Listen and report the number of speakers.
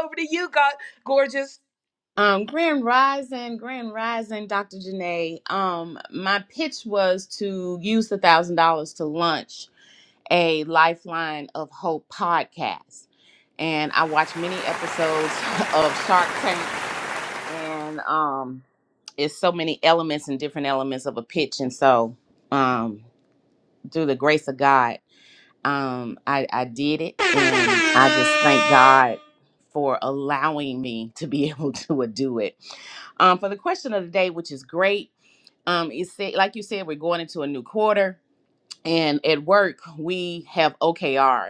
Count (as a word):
two